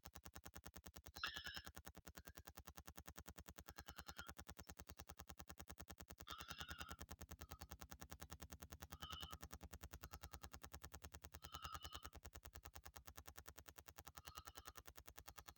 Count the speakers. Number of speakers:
zero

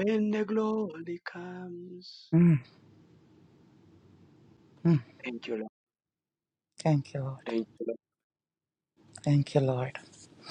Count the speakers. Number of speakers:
two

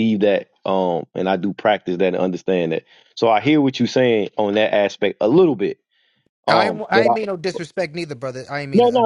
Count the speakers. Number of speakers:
two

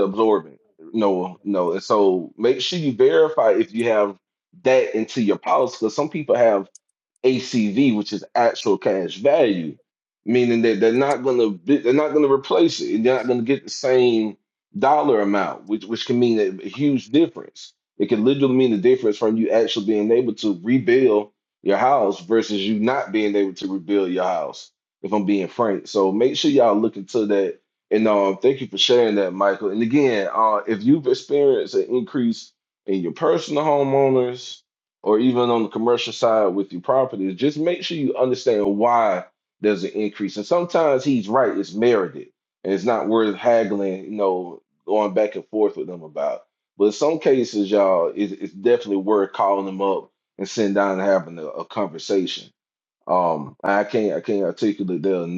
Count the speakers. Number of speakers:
one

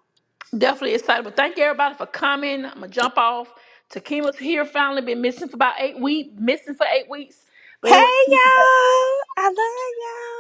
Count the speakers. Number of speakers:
two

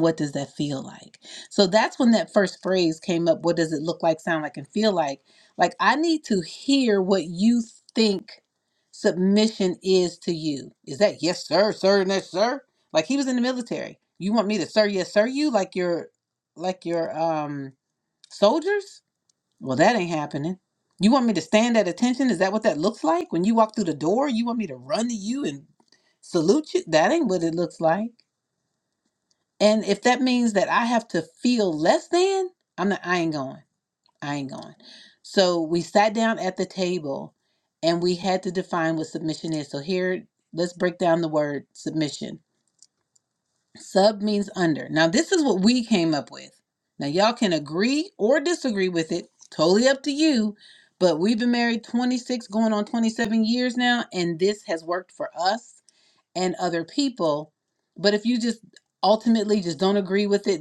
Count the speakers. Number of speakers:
one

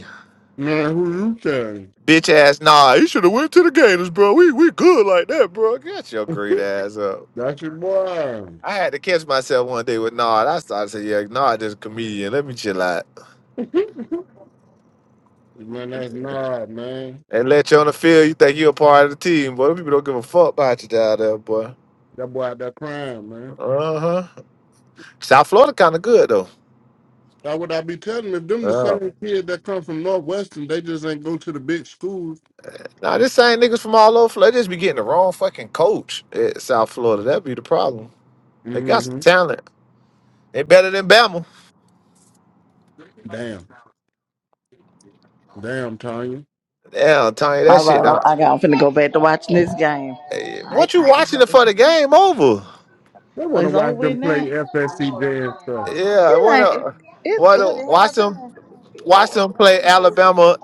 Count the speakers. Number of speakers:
three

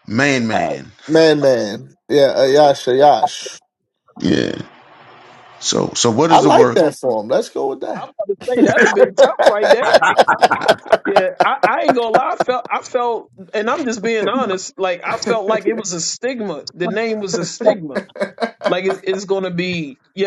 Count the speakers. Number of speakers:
three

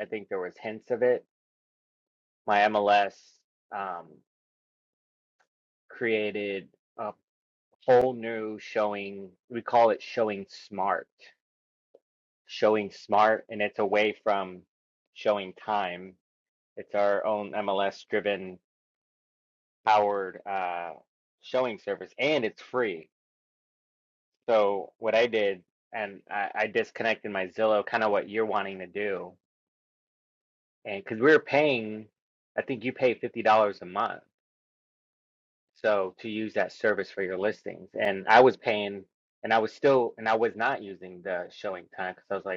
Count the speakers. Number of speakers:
one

